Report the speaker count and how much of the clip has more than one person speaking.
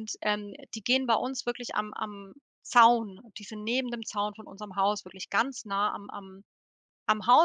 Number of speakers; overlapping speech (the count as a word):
one, no overlap